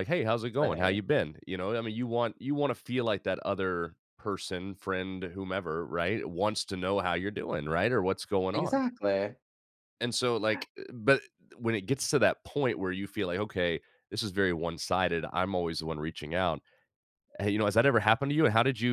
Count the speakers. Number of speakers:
2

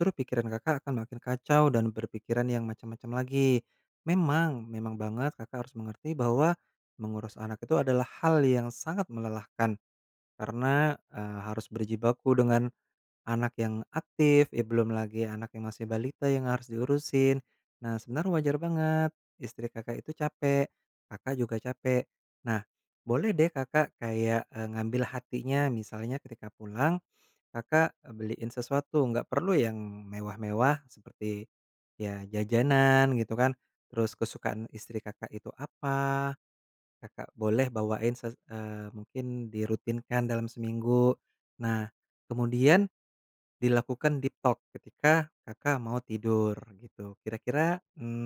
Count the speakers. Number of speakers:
1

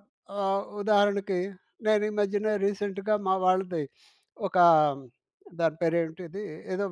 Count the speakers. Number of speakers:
1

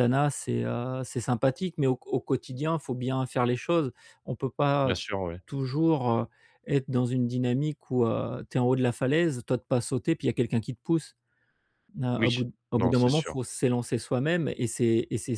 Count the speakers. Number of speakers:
2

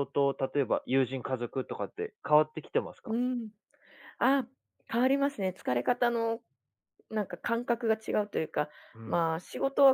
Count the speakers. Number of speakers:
2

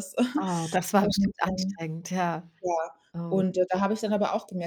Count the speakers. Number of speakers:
2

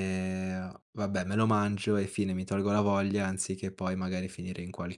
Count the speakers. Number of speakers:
1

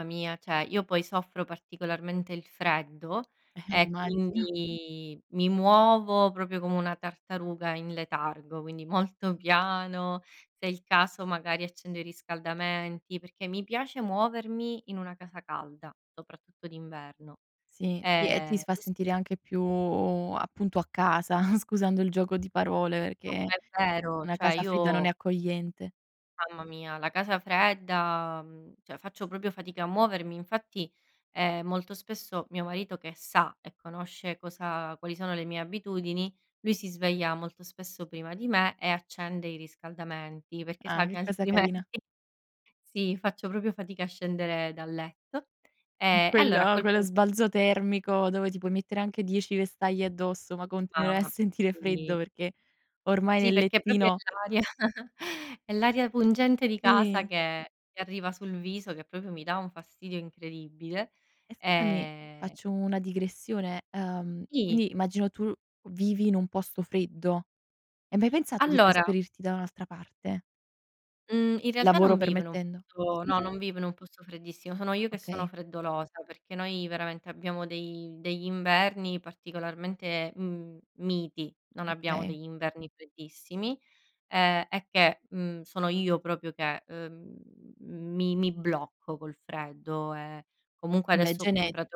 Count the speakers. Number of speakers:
2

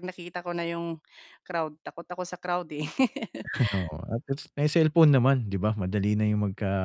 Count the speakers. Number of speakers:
2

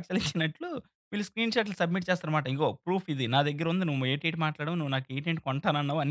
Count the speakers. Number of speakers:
1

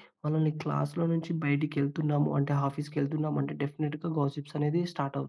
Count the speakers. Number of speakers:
1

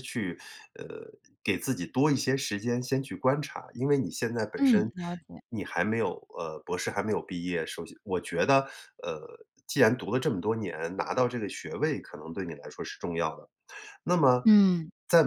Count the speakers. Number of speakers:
2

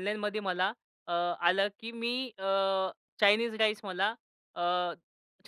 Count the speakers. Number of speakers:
1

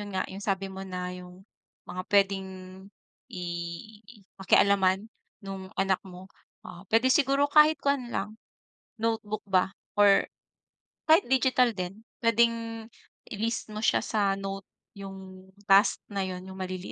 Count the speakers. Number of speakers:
1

